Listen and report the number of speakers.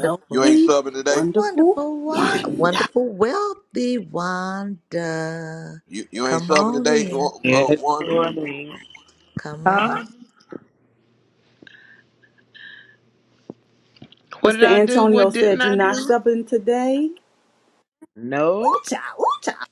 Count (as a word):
four